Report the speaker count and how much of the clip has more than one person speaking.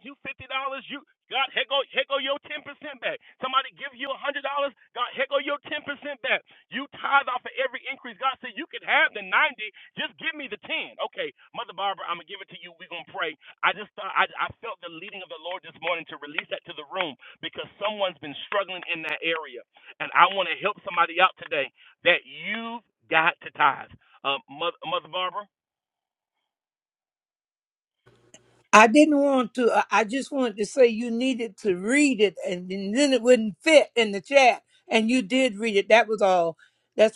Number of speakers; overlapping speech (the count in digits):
2, no overlap